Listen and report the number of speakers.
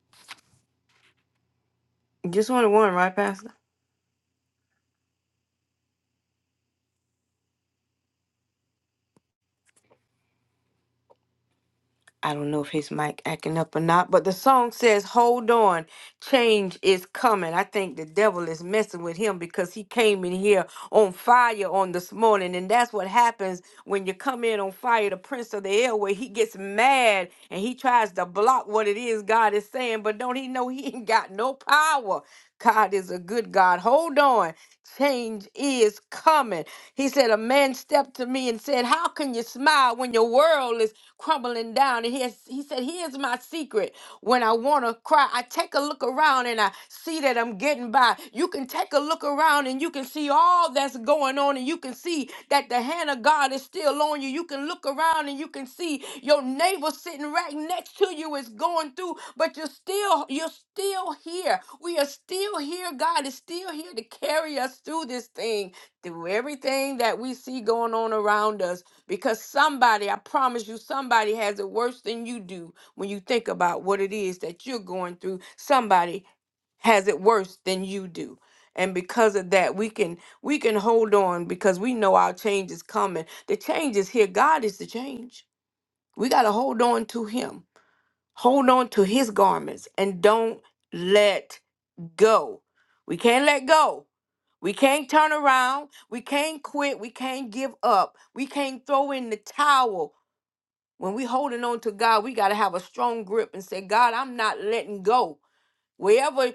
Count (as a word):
one